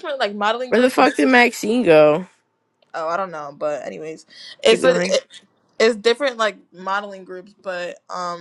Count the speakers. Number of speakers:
2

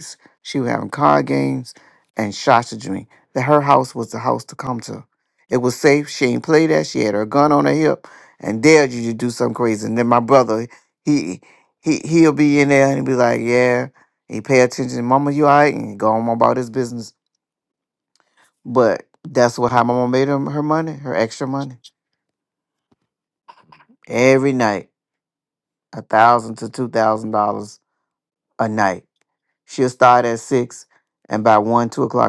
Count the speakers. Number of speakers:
1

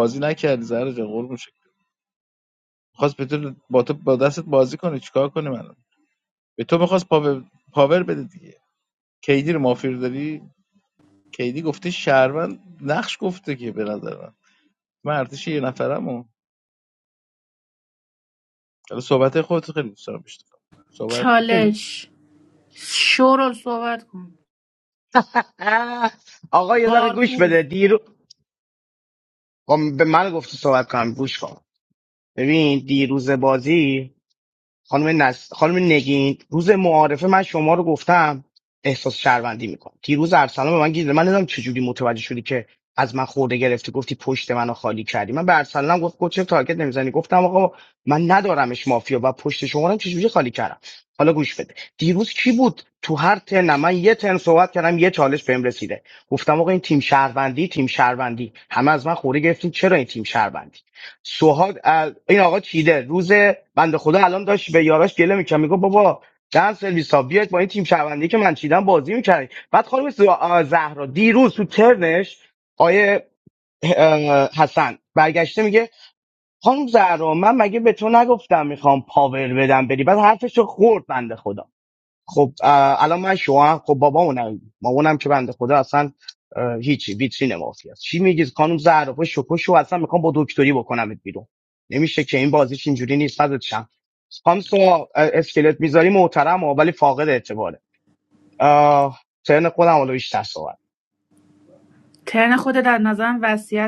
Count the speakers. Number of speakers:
3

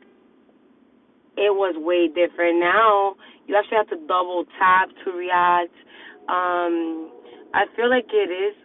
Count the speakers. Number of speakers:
1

